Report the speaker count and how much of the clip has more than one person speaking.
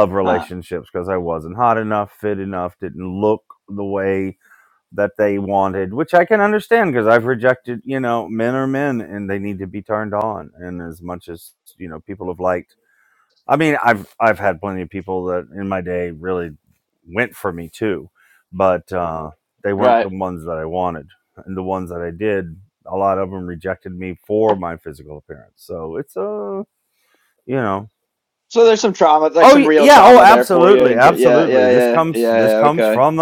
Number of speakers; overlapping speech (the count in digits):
2, about 13%